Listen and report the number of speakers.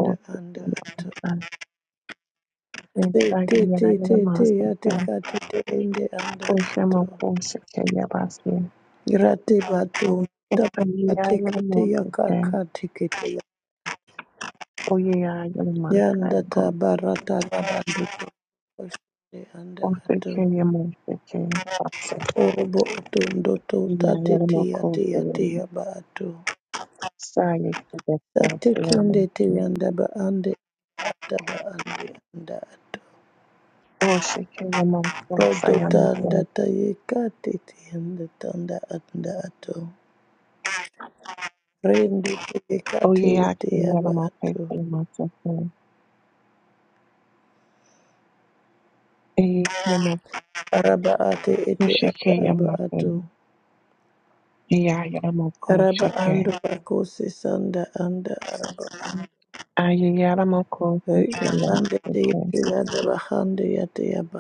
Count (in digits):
2